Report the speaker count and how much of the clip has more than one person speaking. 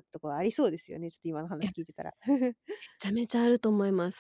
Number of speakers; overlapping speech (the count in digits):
2, about 2%